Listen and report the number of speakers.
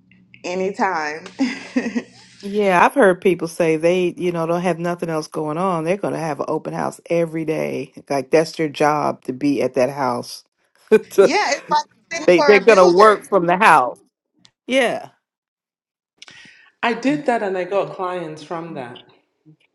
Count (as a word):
three